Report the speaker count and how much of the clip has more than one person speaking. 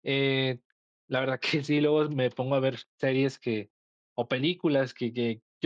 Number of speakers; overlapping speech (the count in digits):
1, no overlap